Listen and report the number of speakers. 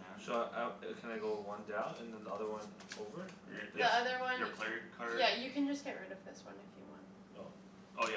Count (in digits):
3